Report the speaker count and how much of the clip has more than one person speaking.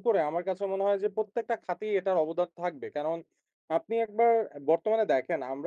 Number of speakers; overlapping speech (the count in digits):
1, no overlap